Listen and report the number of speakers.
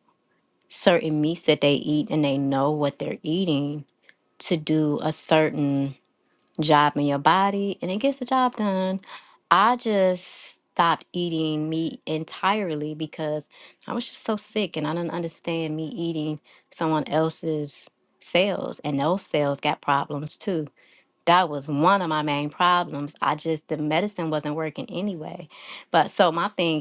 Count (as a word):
one